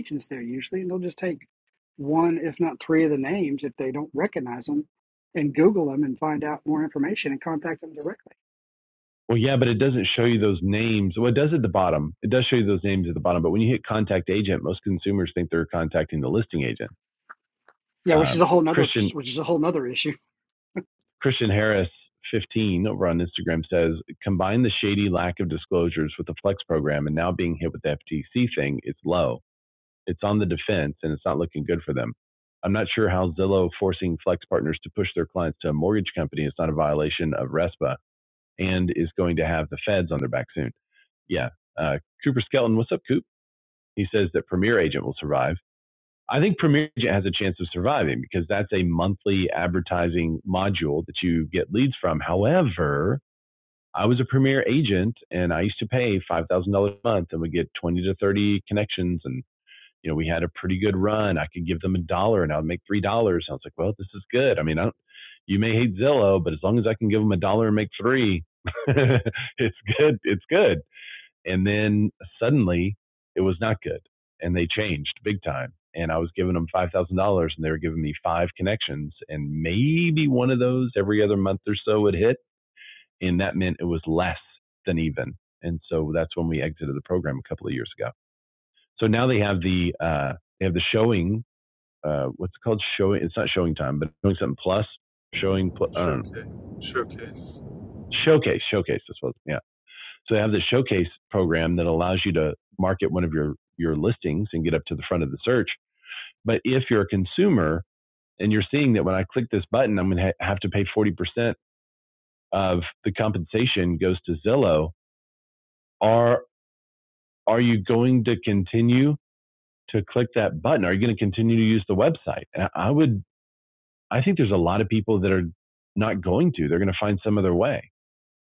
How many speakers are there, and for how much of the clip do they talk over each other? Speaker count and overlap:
three, about 1%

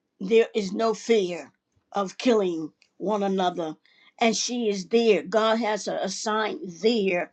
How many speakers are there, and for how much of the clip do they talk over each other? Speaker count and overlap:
one, no overlap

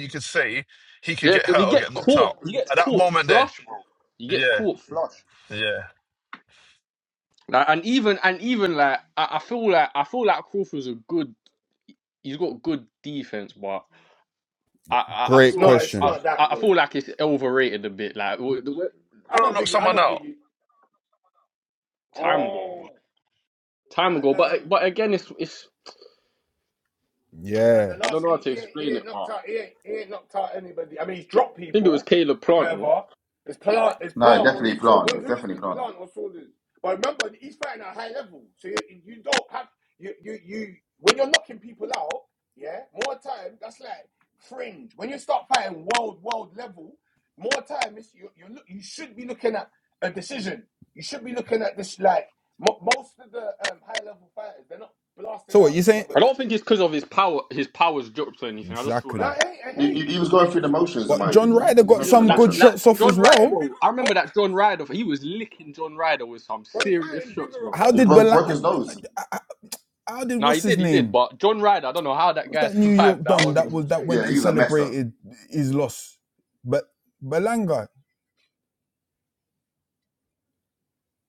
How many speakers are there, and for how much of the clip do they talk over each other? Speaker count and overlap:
five, about 23%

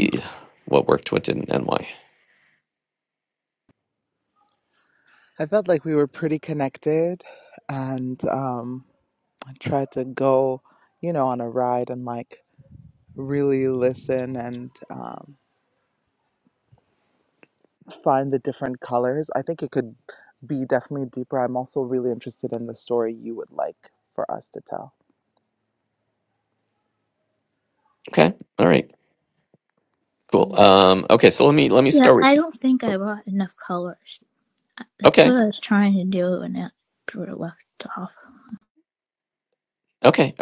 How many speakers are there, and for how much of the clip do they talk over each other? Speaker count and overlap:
three, about 3%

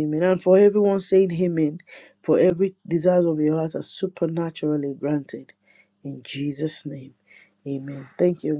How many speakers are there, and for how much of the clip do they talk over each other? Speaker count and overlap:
one, no overlap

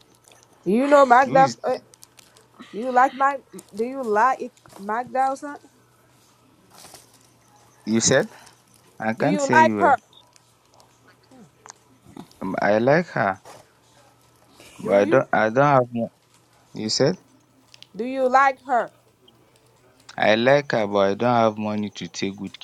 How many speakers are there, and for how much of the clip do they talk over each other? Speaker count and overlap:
two, about 7%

